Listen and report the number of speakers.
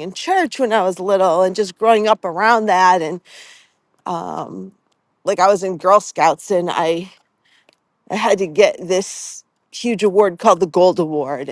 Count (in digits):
1